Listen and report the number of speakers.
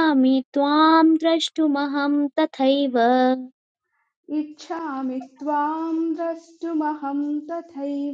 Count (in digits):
2